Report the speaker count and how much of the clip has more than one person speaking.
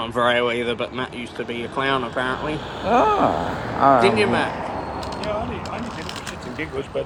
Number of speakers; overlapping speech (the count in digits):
3, about 8%